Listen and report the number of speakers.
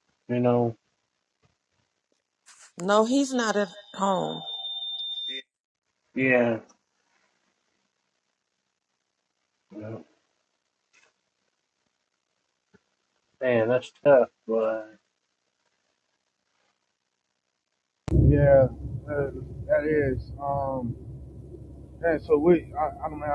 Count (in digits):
3